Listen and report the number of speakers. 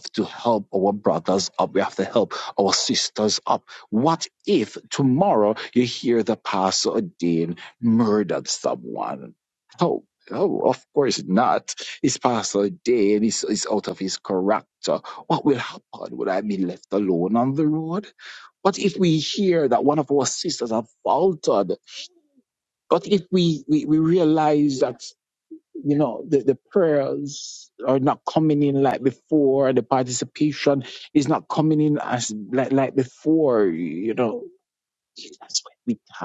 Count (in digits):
1